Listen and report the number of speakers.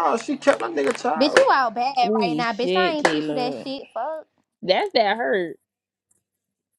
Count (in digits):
3